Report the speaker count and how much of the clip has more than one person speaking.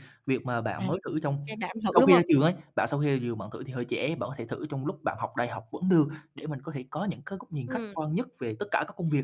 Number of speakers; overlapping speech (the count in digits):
2, about 8%